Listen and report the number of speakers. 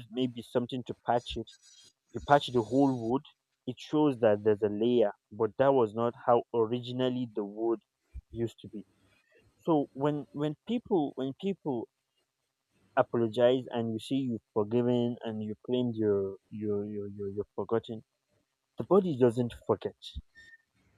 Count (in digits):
1